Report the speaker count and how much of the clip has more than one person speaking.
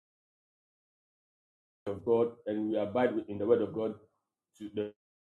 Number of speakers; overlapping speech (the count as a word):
one, no overlap